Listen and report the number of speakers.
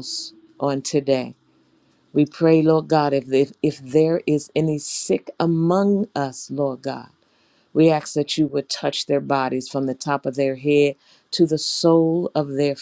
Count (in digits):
1